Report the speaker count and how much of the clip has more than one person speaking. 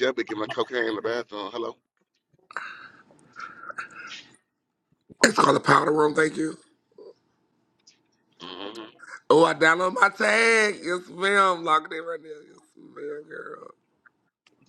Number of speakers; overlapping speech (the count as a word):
two, no overlap